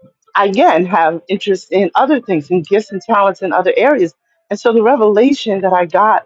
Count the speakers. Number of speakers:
1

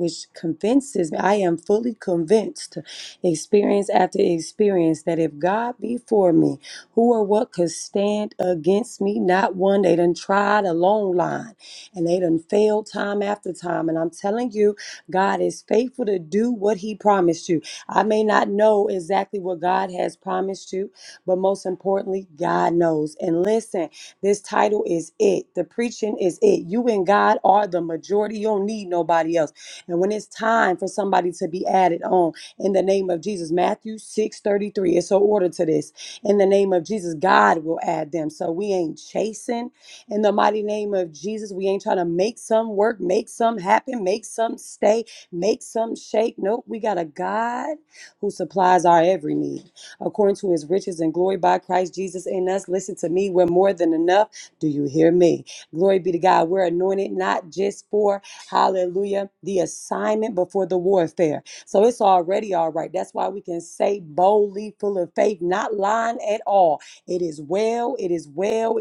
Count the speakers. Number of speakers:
1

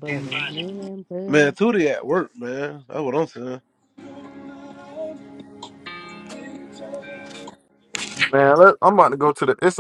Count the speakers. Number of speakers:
3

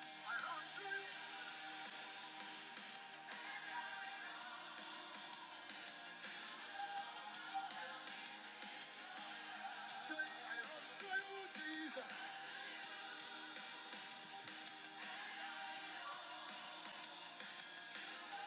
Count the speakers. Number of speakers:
0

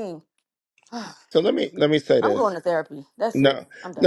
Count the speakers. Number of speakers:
2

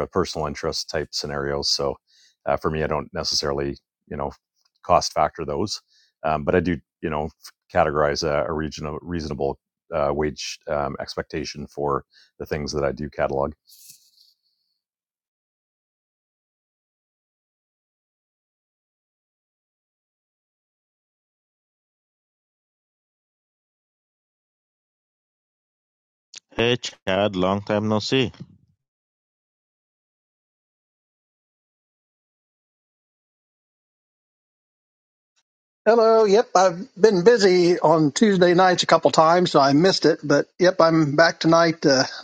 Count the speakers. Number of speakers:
3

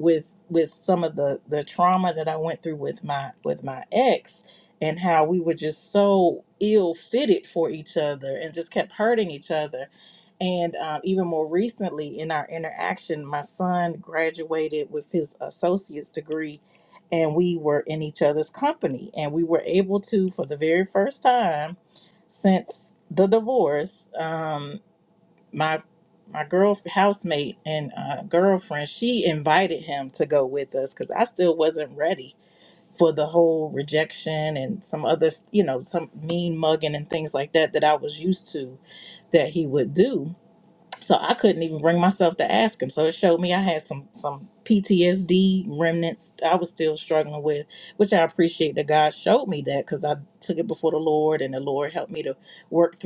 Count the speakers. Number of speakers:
1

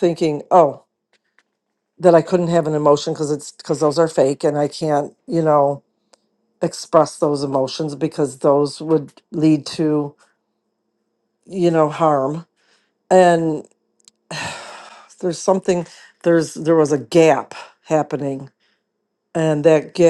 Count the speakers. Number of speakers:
1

